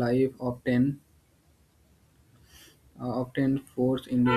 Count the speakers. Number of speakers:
1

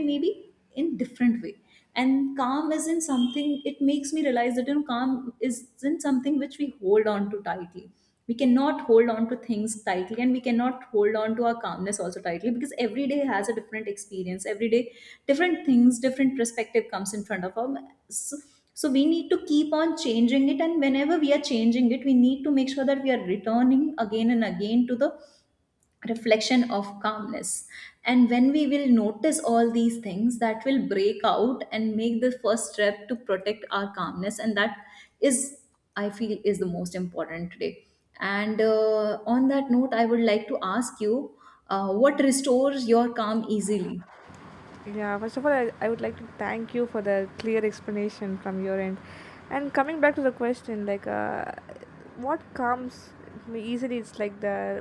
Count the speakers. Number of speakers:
2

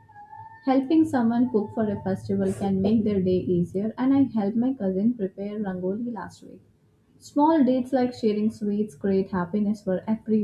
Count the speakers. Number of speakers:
1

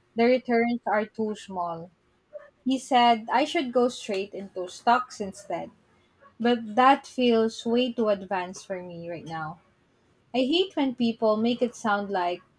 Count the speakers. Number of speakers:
1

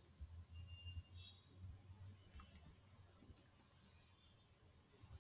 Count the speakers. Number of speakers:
0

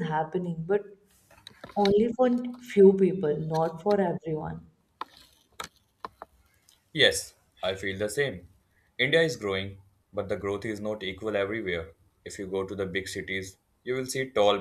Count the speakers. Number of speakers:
2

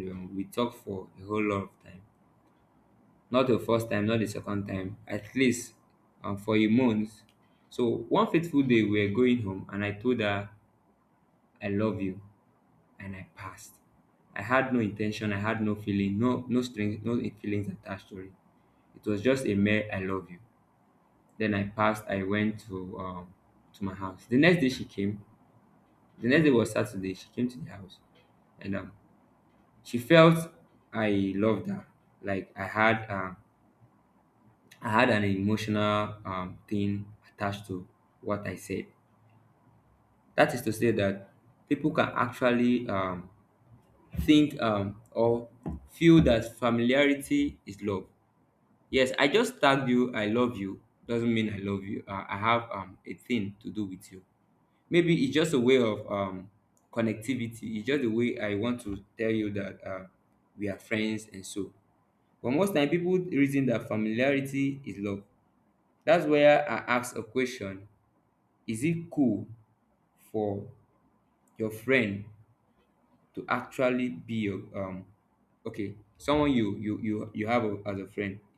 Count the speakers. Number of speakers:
1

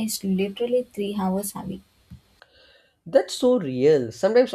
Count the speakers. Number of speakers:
2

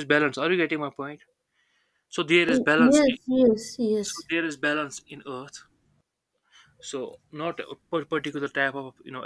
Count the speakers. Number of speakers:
2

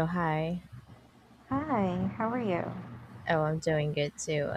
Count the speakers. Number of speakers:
2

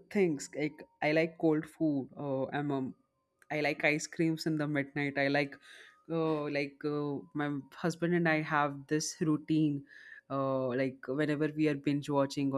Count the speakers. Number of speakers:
1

